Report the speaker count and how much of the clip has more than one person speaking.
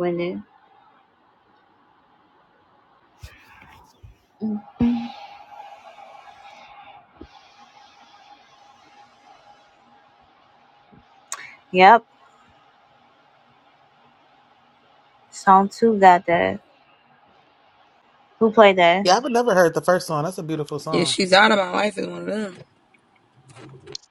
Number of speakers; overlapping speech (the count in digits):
3, about 1%